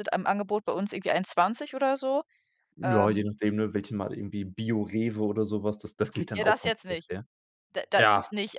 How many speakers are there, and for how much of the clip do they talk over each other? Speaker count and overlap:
2, about 17%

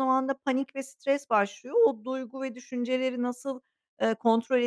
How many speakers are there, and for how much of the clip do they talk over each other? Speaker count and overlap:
1, no overlap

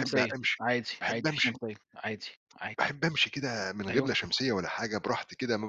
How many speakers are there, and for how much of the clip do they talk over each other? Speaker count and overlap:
2, about 26%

